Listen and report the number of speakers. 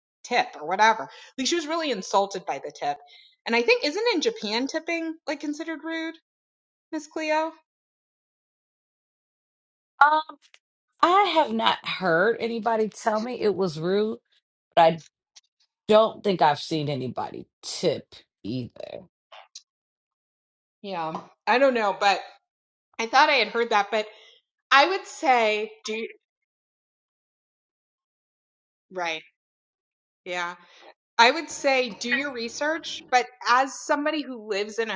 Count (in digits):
2